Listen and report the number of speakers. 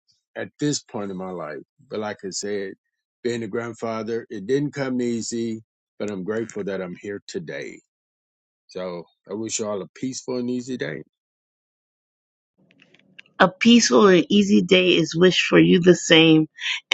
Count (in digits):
2